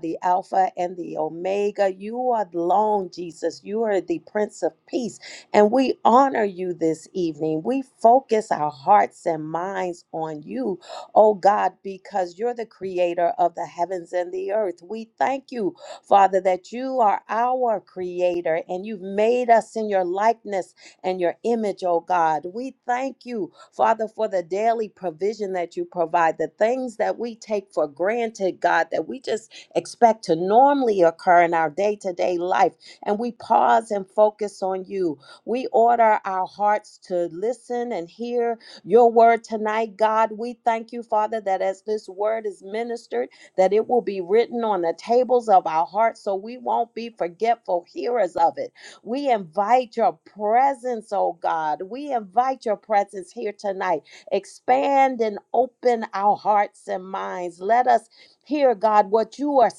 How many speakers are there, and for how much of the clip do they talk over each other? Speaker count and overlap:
1, no overlap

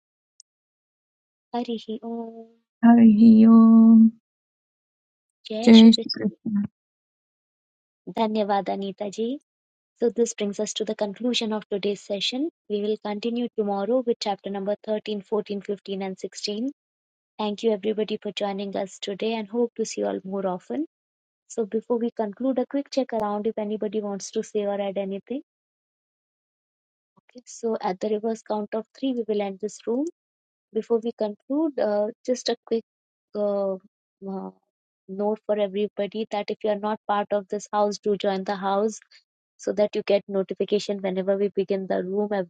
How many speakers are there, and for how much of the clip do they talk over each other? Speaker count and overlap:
2, about 2%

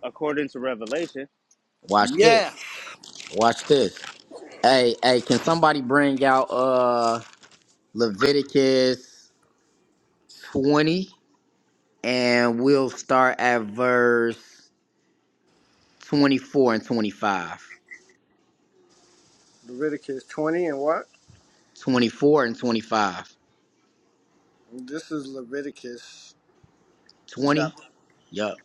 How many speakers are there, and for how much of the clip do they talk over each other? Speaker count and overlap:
3, about 2%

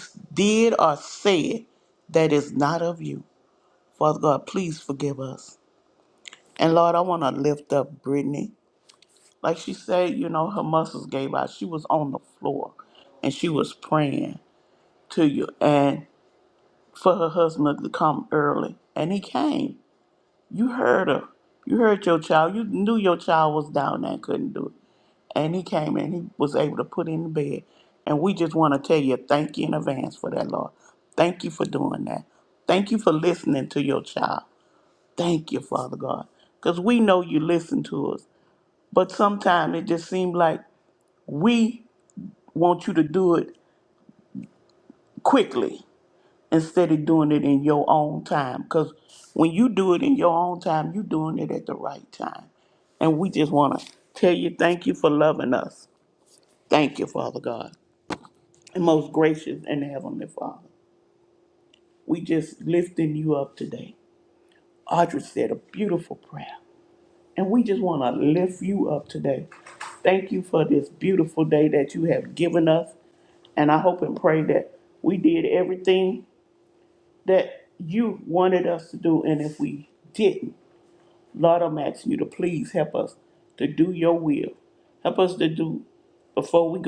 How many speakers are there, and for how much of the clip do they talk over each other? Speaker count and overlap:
1, no overlap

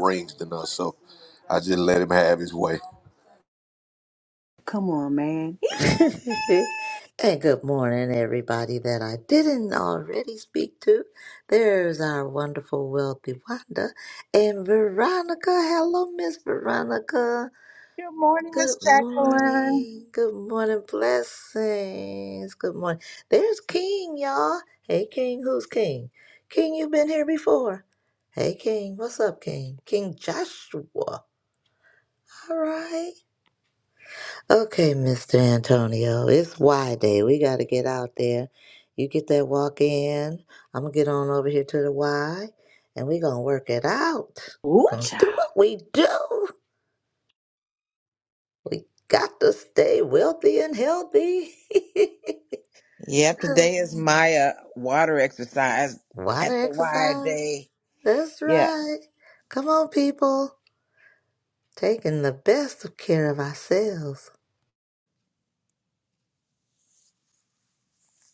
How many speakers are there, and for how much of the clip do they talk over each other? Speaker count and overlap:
5, about 4%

